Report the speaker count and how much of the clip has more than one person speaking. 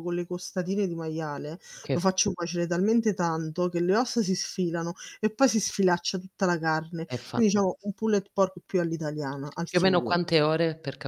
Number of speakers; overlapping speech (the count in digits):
2, about 8%